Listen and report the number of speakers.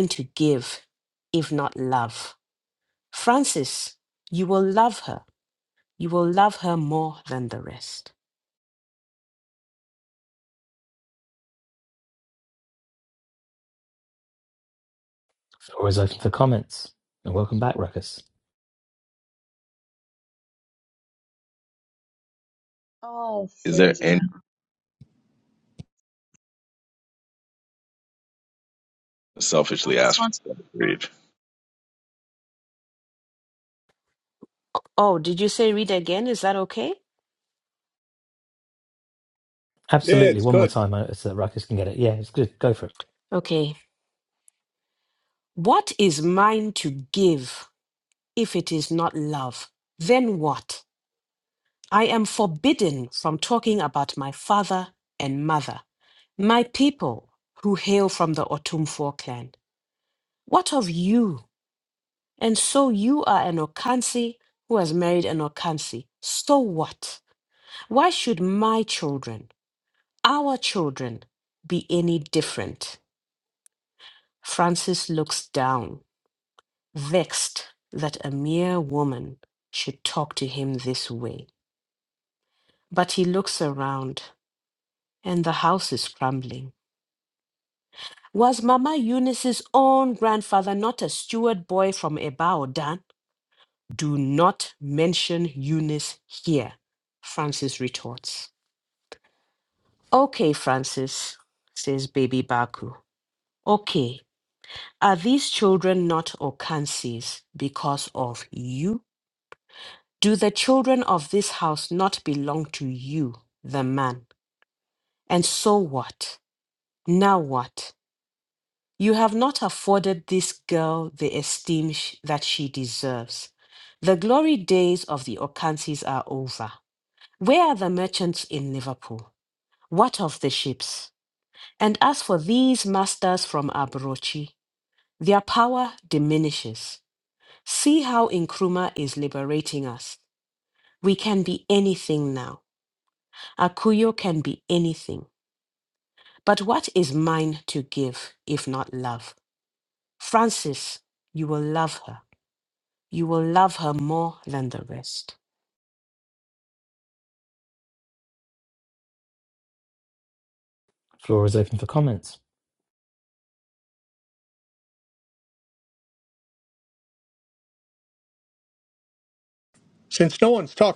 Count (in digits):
5